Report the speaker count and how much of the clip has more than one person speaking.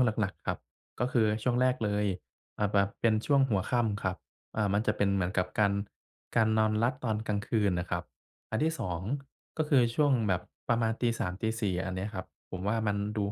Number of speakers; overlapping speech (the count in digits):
1, no overlap